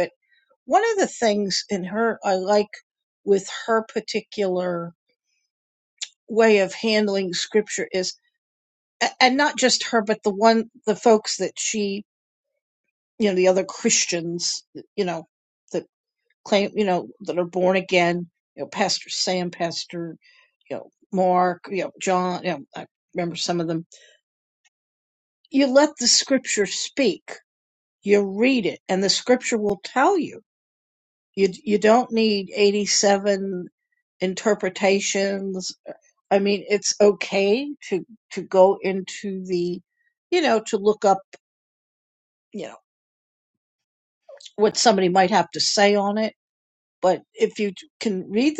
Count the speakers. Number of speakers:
1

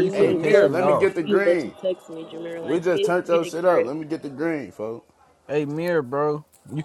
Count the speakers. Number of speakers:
3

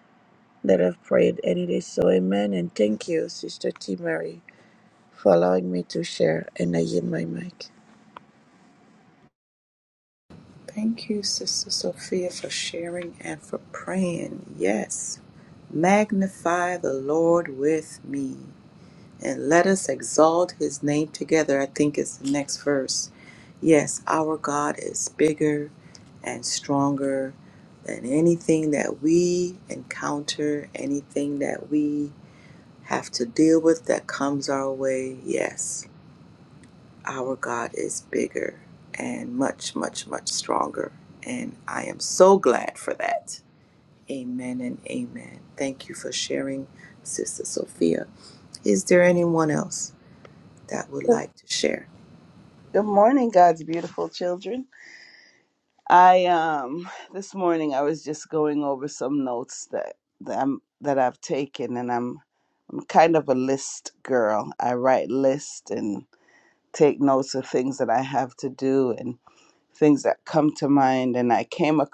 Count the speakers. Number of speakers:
3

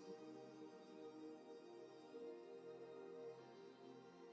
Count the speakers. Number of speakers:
0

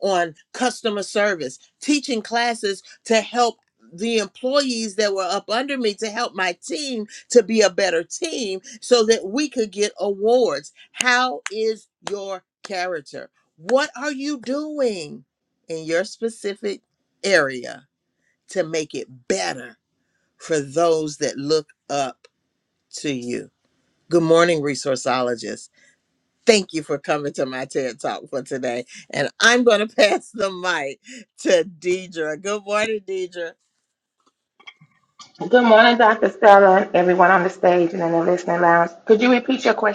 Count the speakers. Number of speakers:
2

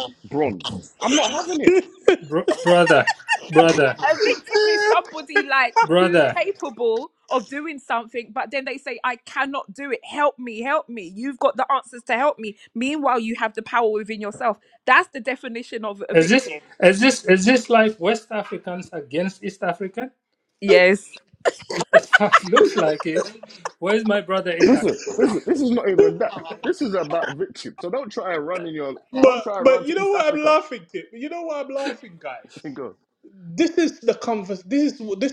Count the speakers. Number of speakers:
4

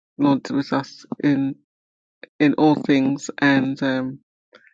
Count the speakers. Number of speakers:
1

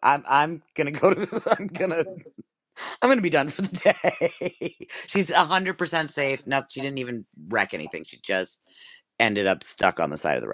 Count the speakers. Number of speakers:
1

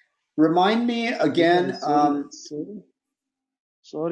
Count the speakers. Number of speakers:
2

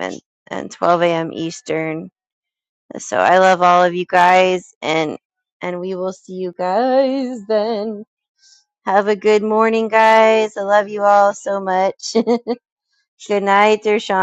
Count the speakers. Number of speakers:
1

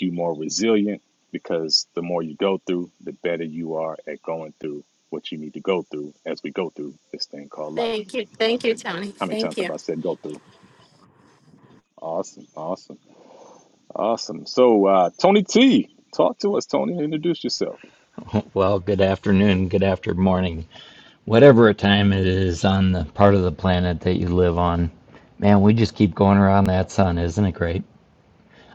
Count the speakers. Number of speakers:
3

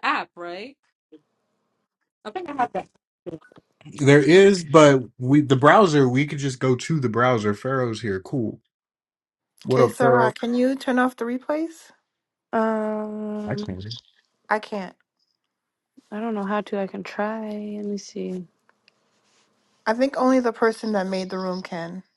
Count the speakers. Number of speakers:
4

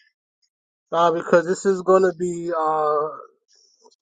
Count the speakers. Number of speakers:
1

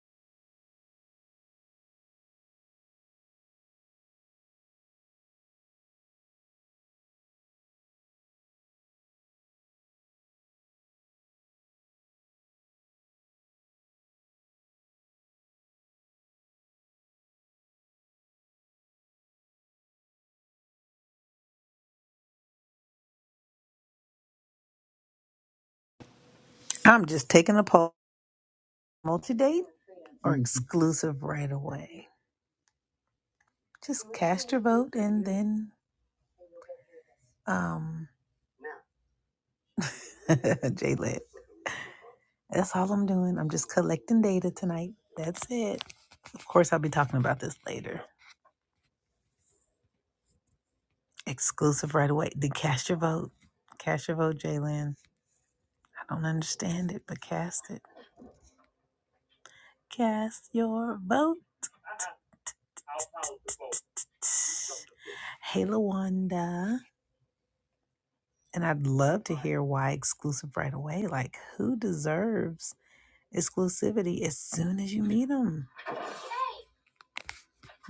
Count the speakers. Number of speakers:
1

